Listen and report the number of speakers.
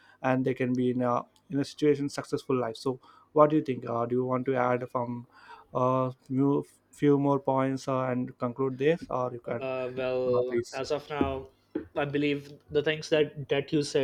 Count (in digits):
2